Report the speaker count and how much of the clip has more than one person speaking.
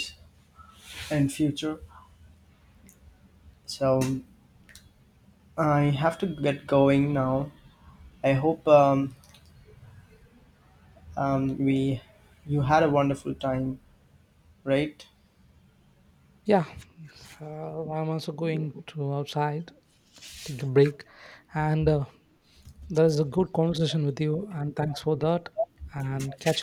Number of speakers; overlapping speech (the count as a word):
two, no overlap